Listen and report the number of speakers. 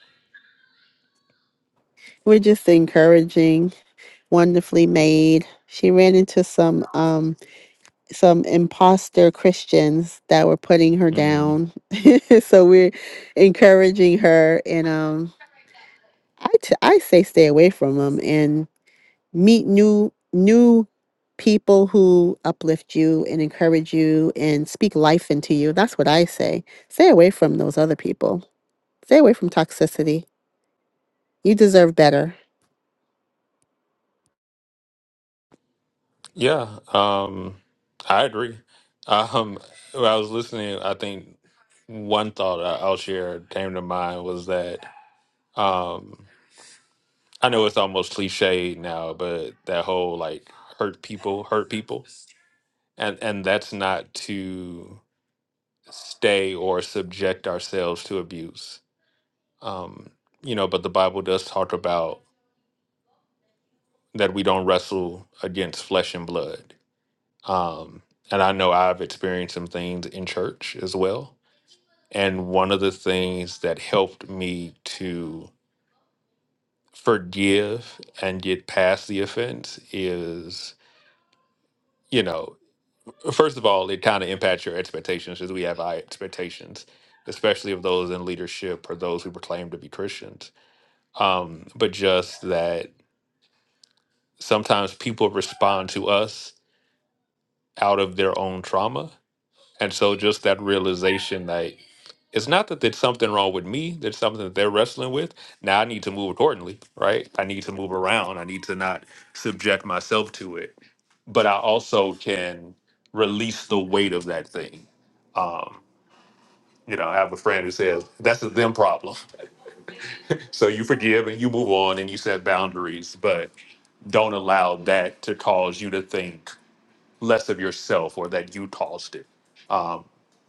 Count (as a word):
two